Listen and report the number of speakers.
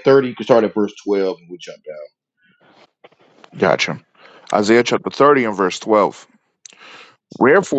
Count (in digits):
2